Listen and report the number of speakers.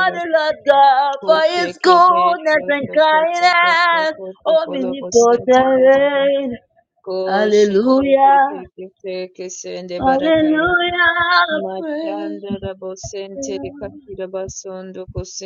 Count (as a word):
two